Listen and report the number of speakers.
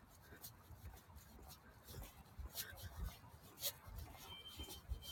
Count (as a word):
zero